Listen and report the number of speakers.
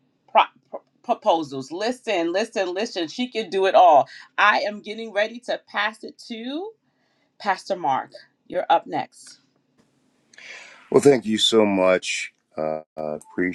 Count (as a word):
two